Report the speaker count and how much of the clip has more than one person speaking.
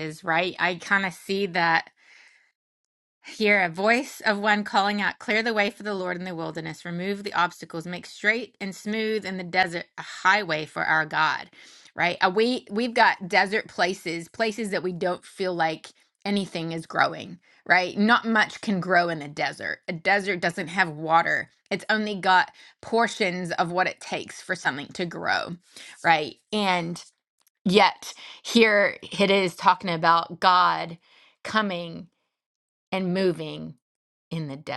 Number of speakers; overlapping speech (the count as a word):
one, no overlap